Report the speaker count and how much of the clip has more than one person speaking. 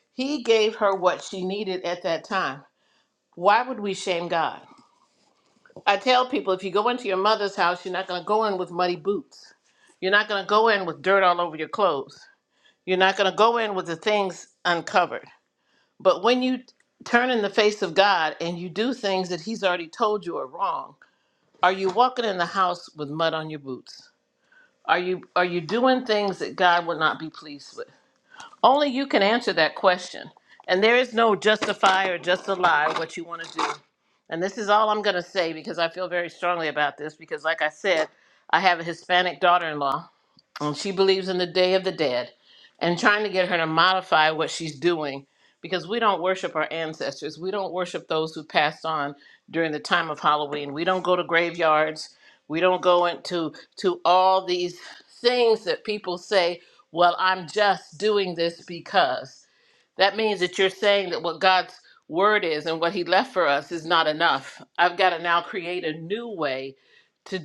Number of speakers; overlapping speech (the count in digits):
1, no overlap